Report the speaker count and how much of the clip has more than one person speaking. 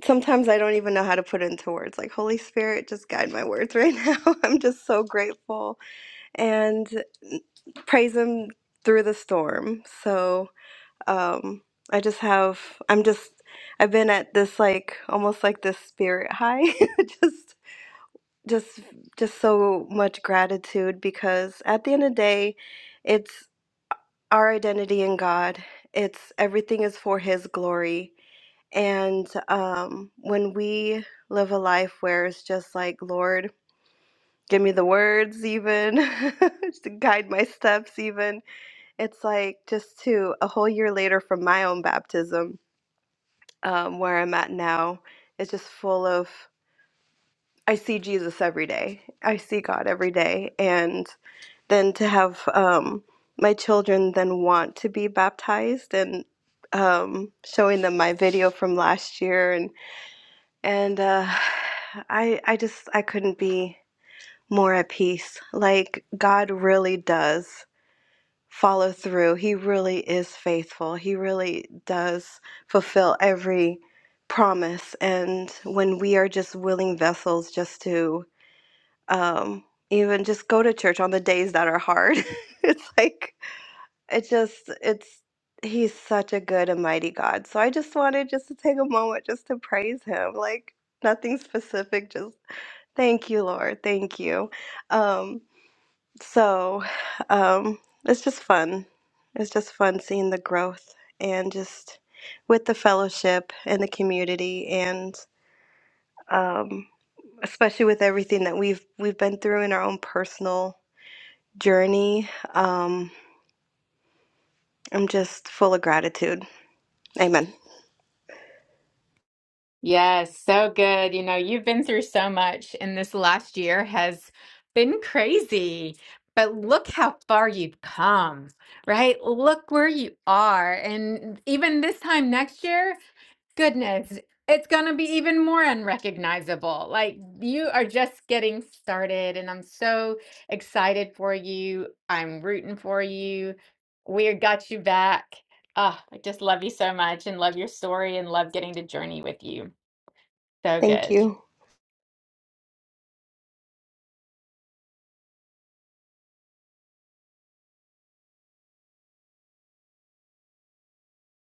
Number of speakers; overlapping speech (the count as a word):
two, under 1%